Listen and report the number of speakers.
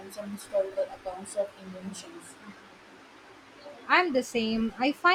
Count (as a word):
two